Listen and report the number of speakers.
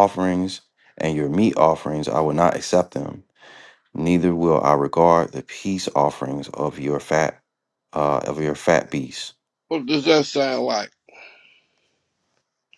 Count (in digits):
2